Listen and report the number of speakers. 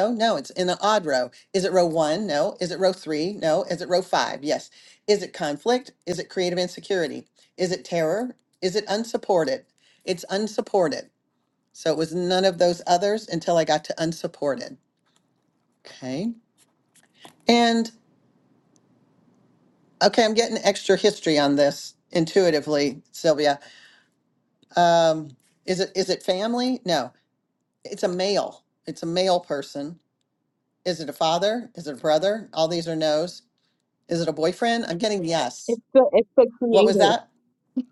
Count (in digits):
2